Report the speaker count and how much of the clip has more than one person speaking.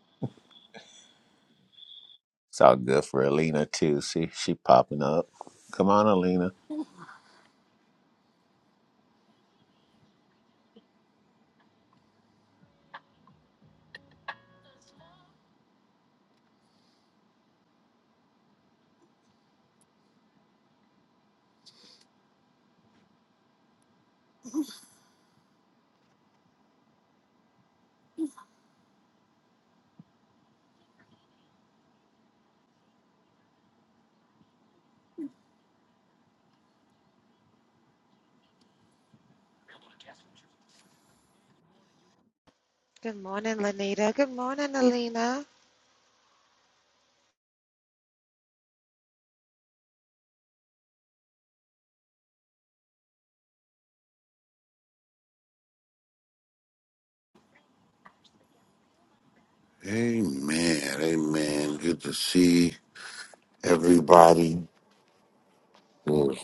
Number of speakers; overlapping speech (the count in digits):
3, no overlap